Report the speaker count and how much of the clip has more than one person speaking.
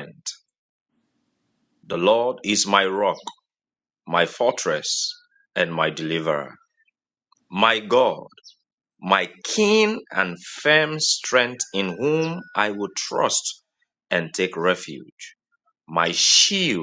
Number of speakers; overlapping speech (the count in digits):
1, no overlap